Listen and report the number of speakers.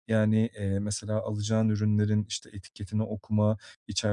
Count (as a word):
one